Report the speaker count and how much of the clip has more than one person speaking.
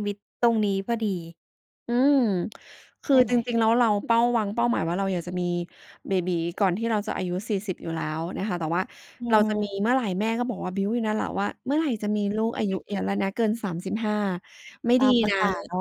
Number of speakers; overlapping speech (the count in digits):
2, about 7%